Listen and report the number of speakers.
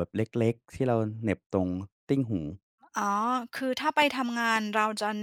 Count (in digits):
2